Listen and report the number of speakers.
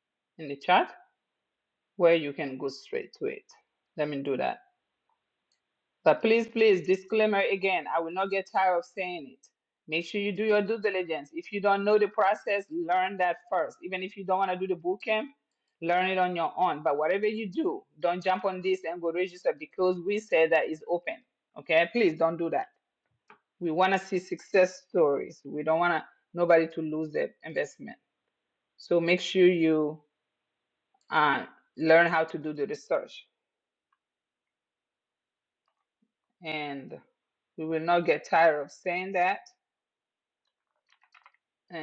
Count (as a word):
one